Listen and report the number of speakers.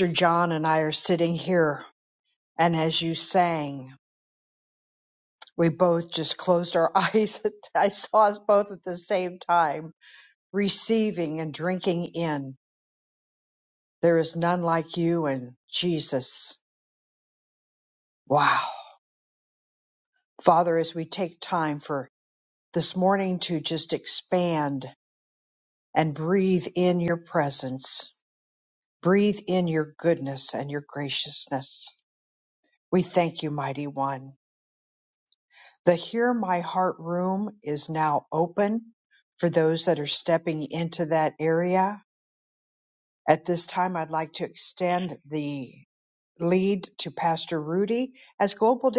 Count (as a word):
one